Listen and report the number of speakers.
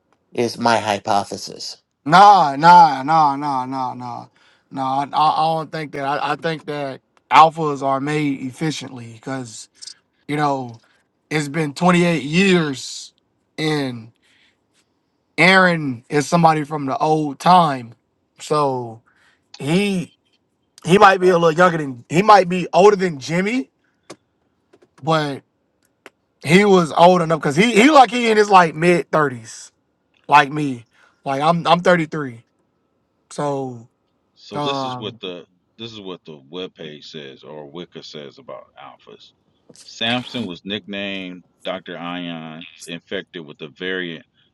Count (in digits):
3